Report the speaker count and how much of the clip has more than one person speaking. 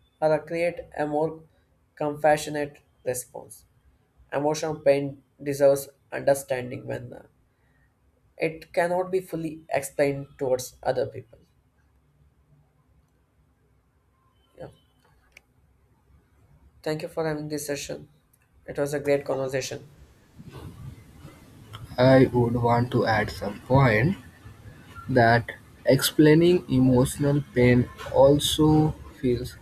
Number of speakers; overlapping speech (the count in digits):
2, no overlap